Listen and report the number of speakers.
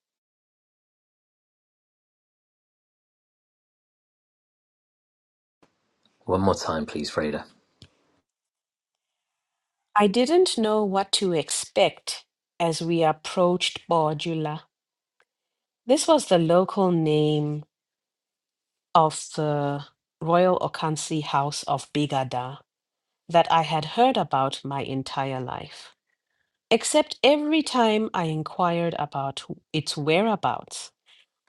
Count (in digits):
2